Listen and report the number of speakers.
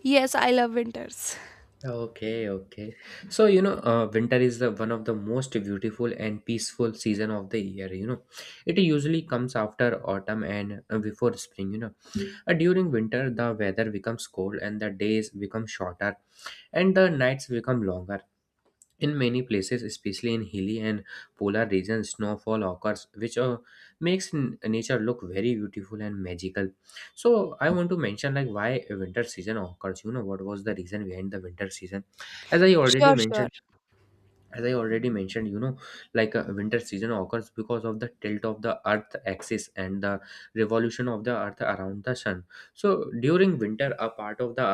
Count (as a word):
two